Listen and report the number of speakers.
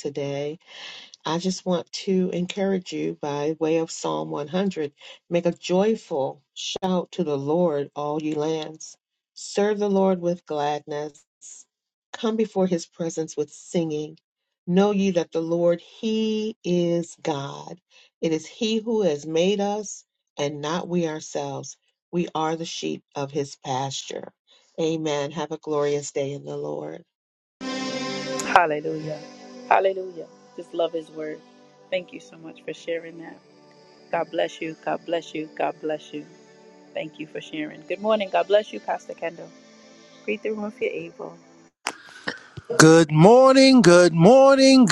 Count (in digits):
3